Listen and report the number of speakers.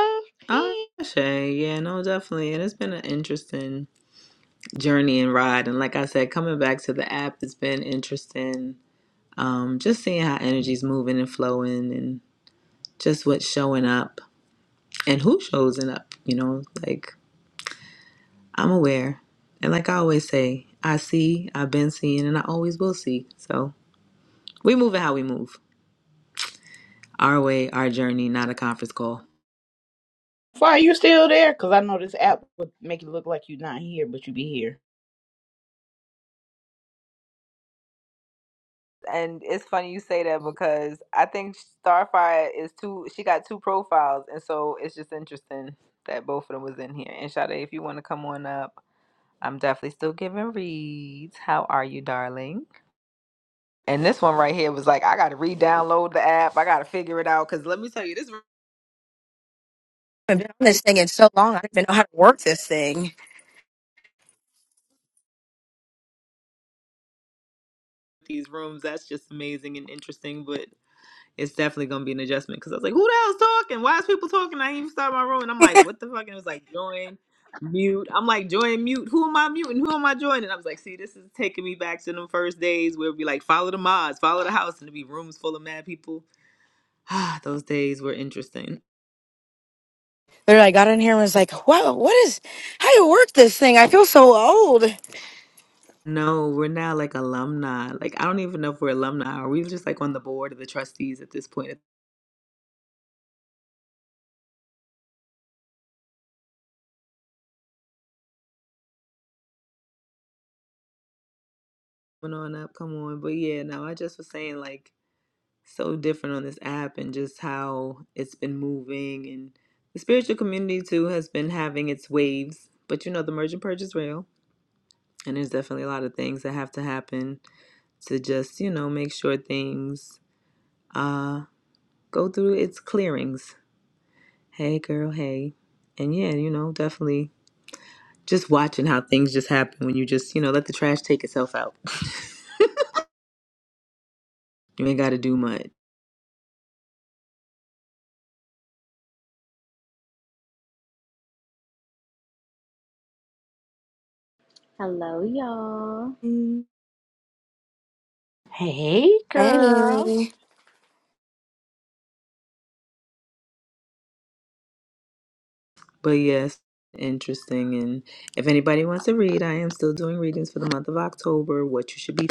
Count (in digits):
4